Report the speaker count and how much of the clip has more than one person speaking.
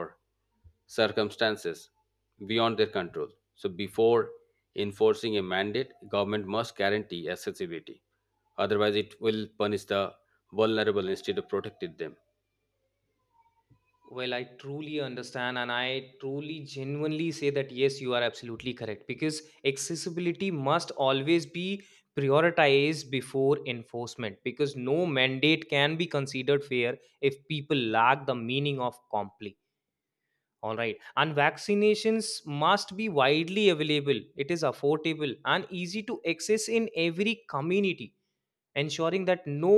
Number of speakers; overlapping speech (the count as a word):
two, no overlap